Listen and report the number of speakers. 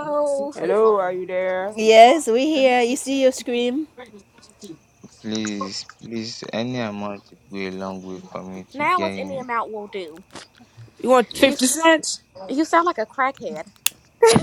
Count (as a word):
four